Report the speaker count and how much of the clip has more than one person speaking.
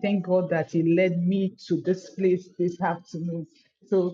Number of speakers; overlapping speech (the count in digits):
1, no overlap